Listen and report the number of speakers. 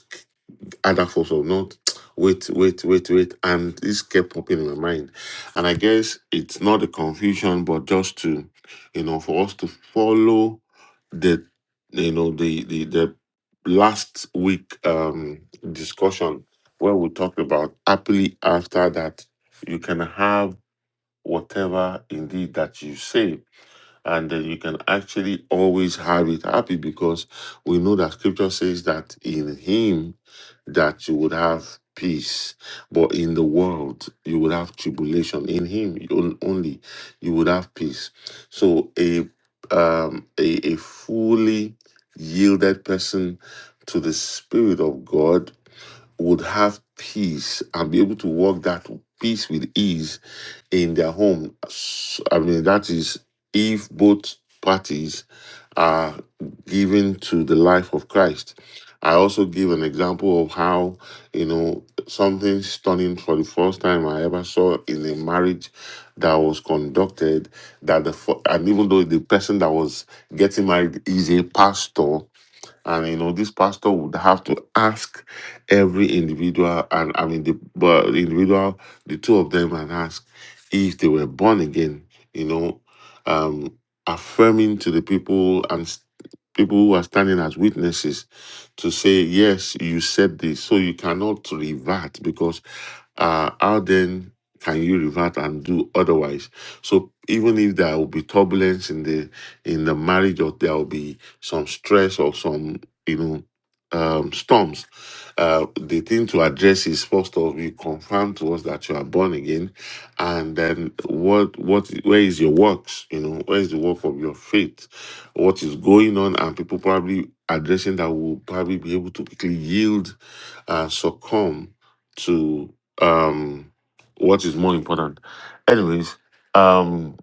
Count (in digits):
1